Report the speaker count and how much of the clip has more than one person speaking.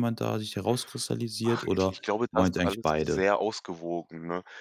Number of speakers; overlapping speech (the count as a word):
two, about 30%